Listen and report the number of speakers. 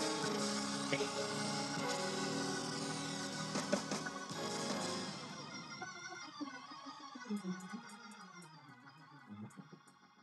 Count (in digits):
0